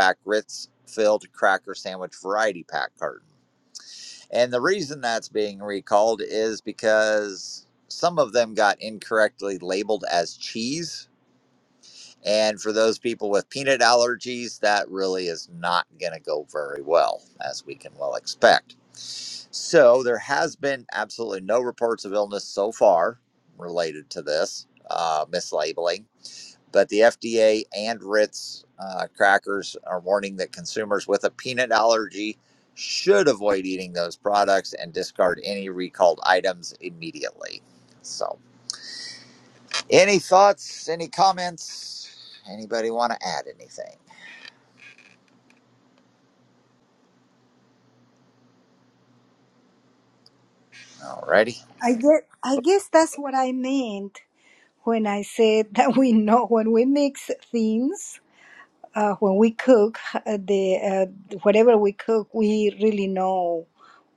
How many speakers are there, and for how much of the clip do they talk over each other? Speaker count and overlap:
2, no overlap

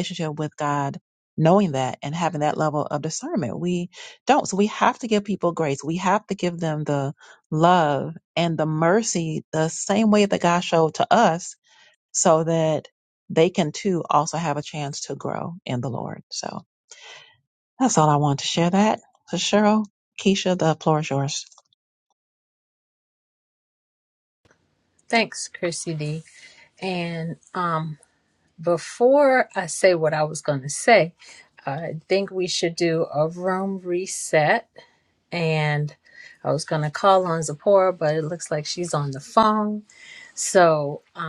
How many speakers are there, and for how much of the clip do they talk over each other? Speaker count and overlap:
2, no overlap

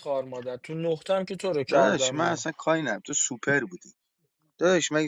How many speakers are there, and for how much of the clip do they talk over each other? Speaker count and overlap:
2, about 14%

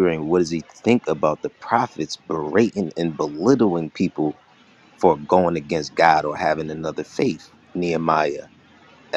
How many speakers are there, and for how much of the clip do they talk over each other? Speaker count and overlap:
1, no overlap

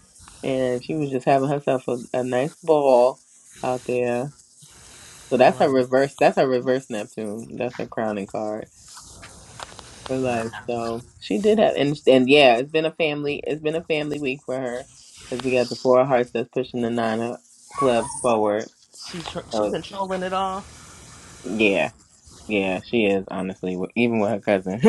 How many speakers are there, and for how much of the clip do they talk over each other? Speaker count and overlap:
2, about 3%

